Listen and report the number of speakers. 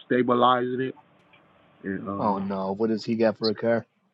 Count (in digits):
2